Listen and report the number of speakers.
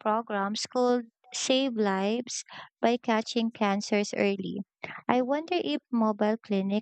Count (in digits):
1